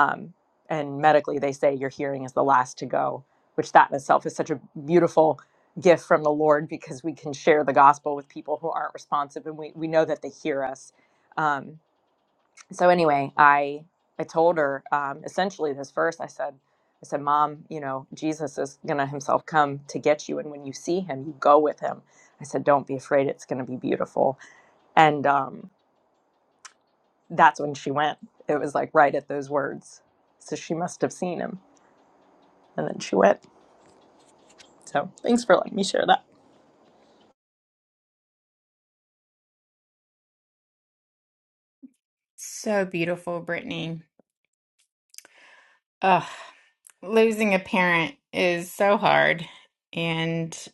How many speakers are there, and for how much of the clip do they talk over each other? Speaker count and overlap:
2, no overlap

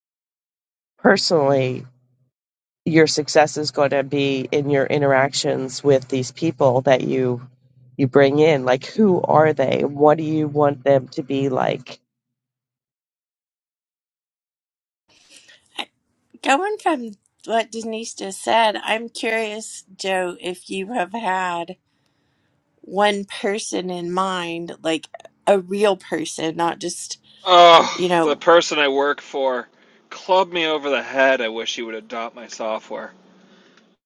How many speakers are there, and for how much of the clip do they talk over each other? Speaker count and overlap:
3, under 1%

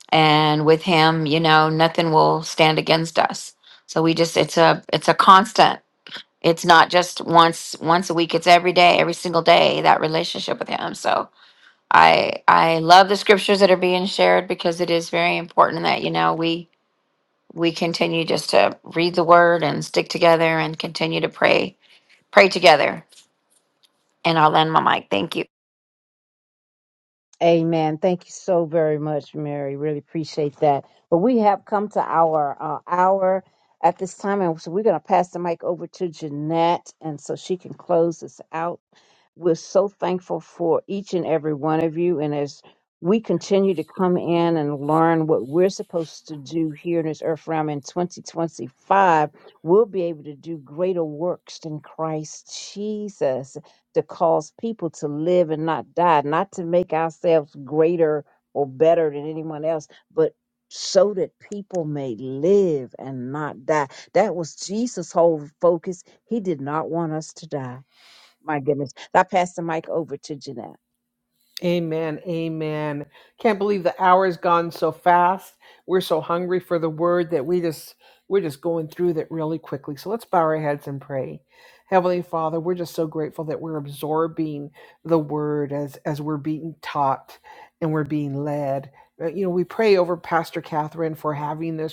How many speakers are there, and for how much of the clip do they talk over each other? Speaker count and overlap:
3, no overlap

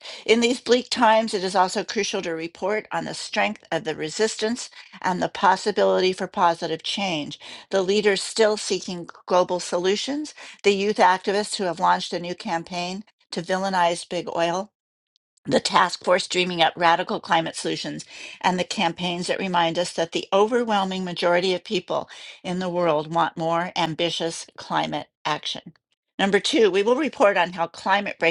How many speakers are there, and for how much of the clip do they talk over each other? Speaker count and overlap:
1, no overlap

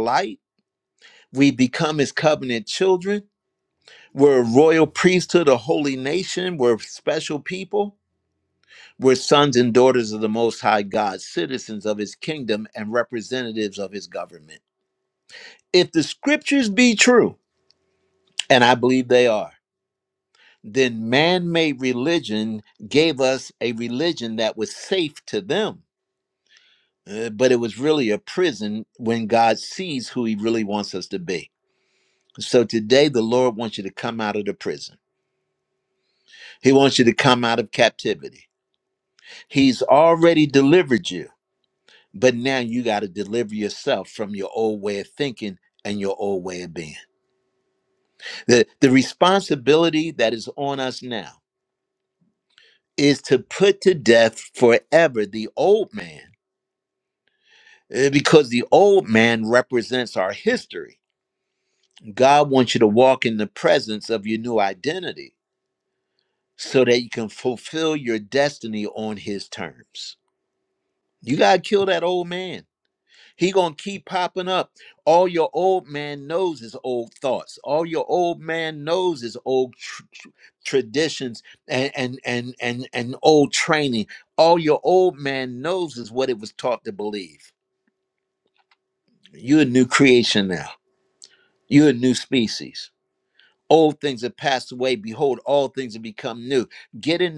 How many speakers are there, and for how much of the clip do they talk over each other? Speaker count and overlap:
1, no overlap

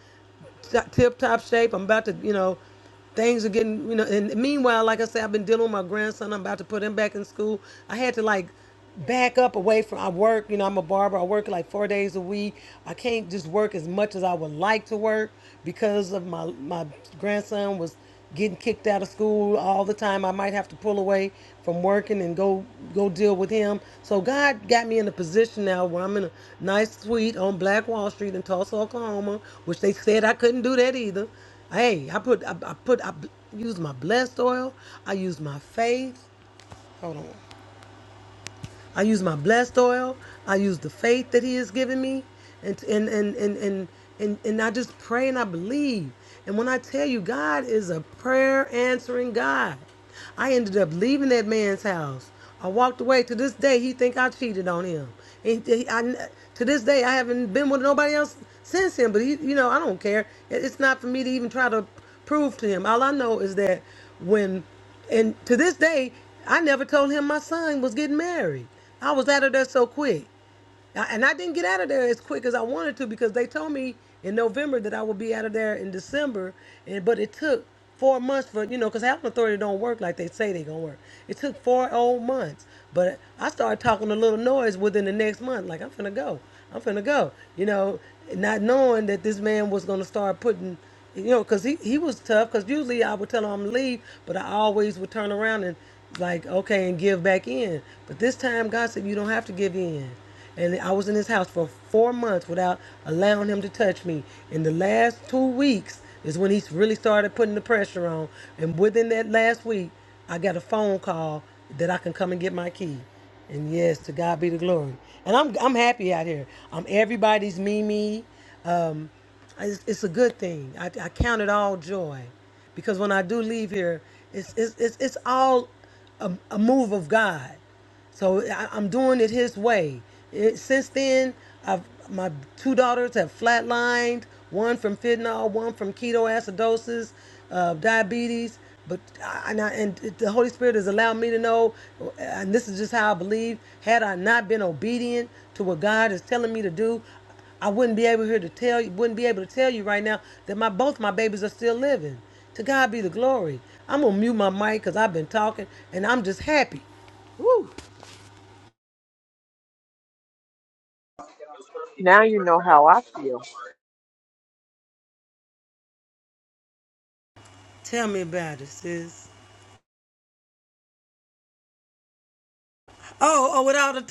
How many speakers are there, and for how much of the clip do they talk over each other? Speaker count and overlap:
2, no overlap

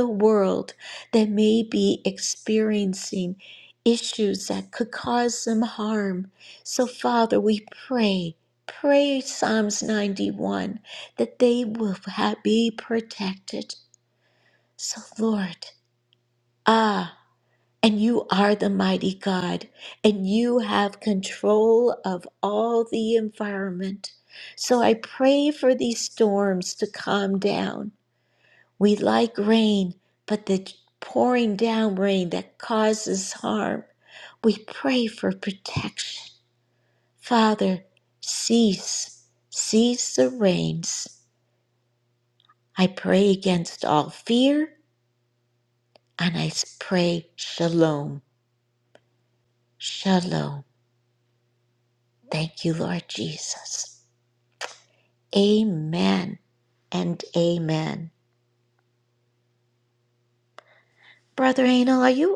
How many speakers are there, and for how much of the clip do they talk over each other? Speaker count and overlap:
1, no overlap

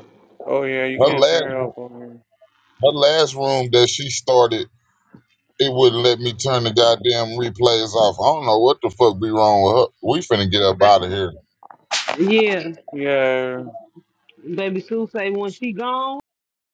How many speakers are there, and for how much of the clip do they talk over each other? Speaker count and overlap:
3, about 3%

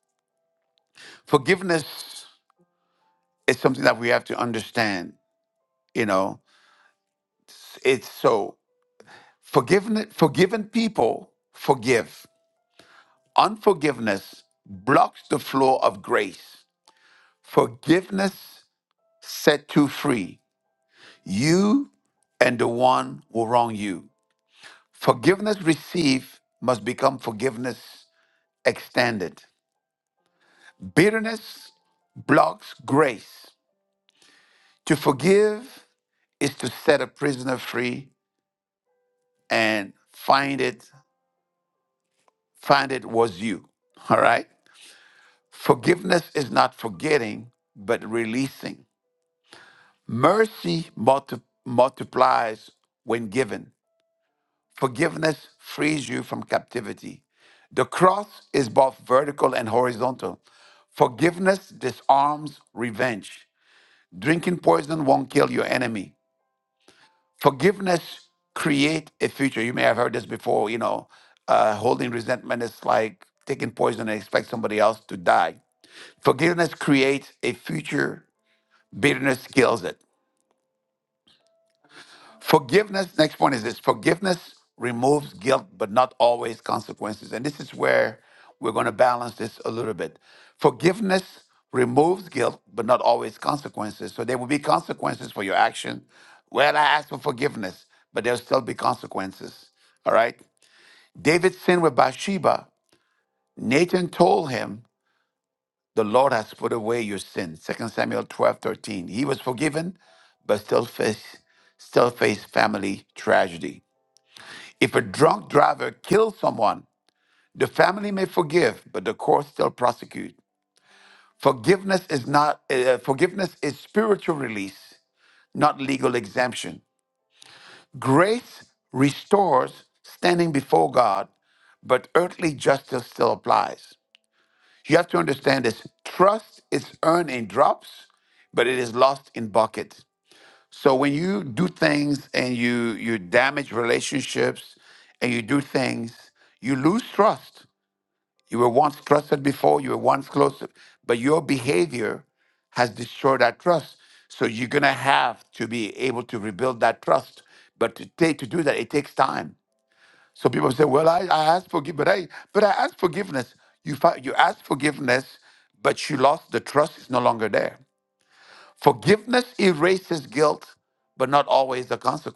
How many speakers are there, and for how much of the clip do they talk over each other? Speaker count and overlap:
1, no overlap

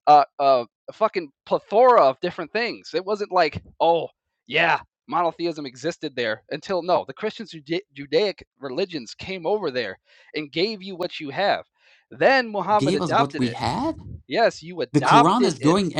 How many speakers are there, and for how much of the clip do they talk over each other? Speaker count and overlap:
2, about 10%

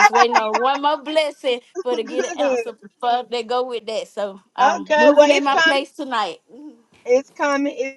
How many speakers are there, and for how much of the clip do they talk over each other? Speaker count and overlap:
2, about 22%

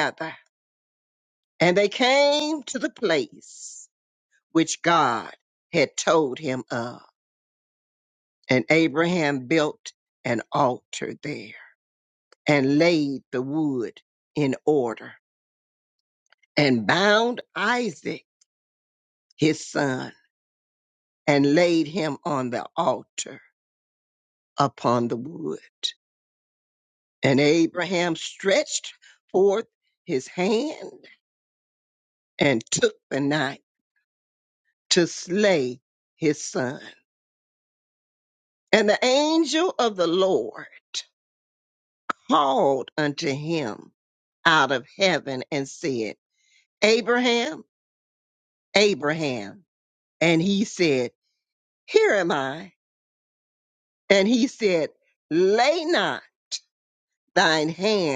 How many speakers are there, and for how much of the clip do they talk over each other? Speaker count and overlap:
1, no overlap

